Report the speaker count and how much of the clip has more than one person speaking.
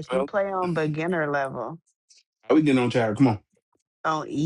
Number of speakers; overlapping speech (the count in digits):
2, about 4%